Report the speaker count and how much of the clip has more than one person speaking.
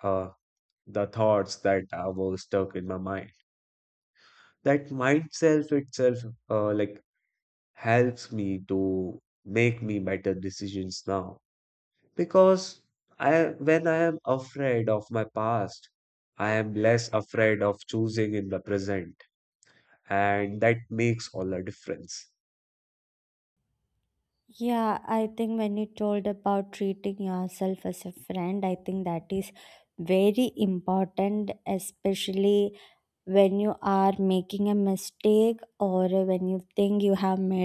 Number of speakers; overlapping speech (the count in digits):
2, no overlap